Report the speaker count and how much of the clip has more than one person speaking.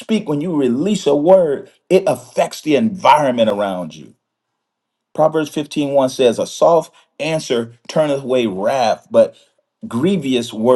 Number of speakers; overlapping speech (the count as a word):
one, no overlap